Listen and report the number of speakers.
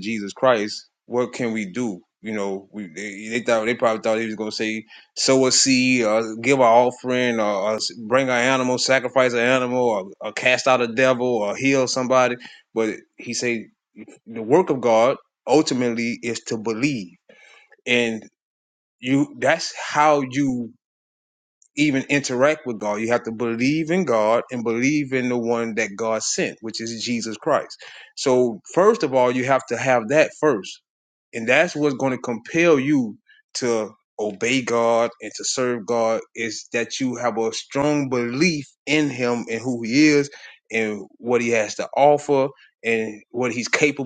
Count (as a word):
one